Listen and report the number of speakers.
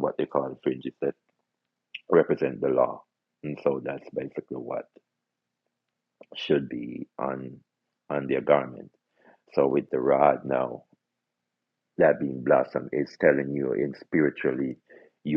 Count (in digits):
1